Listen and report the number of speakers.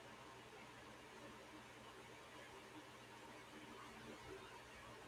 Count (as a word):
zero